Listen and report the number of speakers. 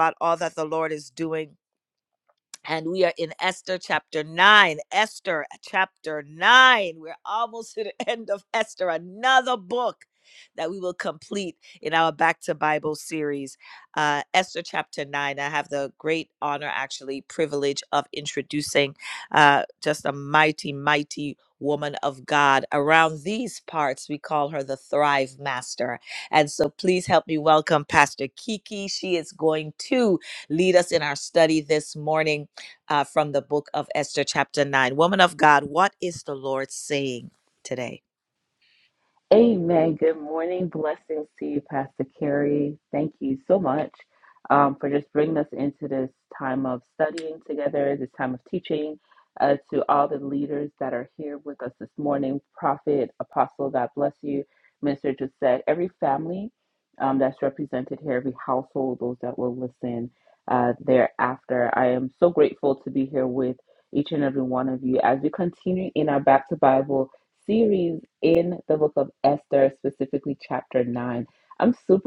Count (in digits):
2